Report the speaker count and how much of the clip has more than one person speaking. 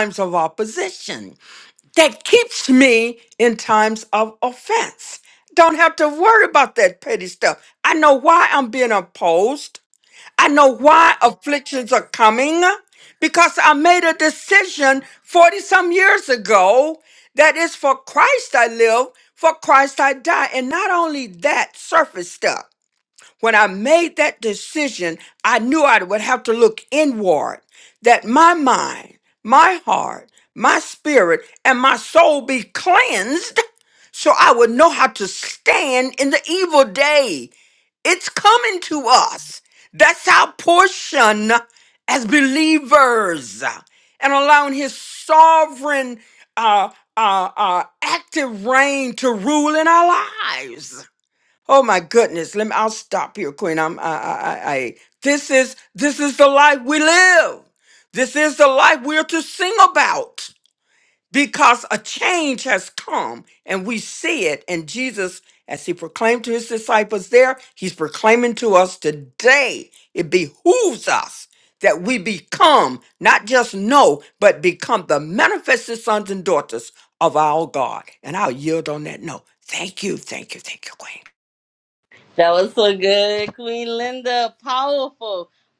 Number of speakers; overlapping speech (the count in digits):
2, no overlap